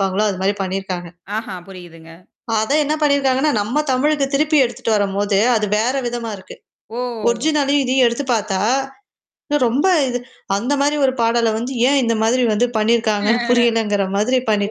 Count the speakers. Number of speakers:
two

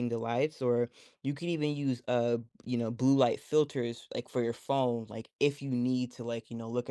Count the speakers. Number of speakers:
one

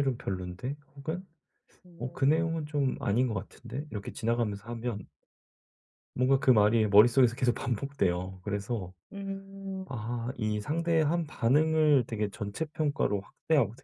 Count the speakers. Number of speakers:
two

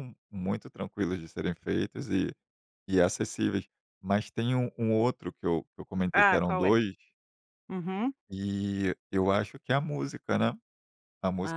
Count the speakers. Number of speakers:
two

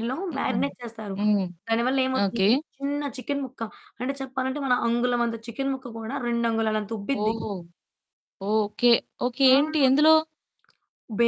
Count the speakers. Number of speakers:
two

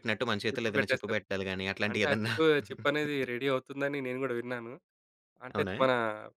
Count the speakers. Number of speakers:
two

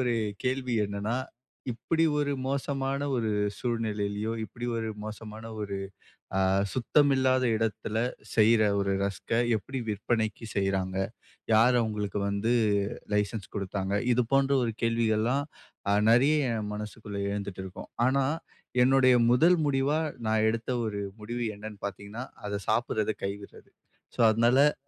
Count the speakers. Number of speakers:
one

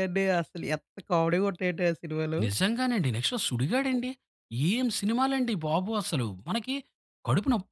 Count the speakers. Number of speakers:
two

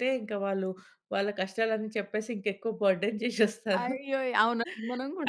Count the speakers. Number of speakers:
two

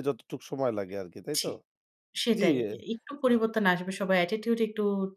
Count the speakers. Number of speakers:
two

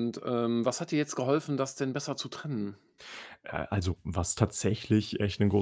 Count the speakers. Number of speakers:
two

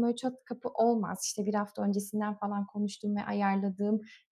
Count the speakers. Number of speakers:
one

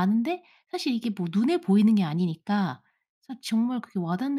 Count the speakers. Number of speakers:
one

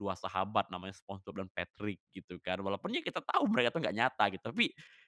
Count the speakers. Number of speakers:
one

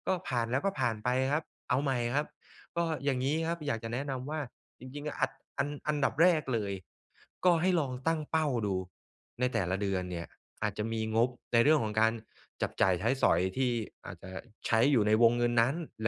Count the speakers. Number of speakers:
one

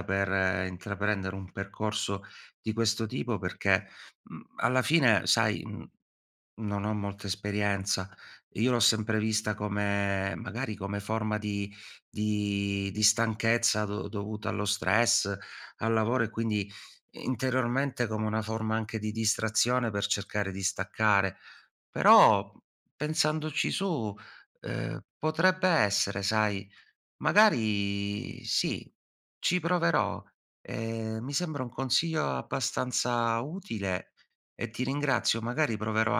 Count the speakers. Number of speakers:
one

